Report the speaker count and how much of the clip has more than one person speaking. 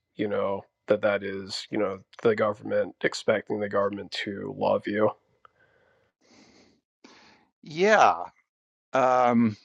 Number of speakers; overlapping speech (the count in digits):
2, no overlap